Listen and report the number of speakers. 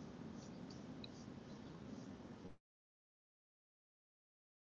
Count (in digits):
0